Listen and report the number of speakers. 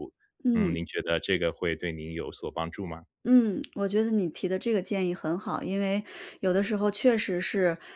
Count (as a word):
two